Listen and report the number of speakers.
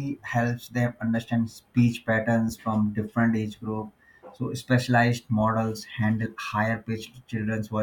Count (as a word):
one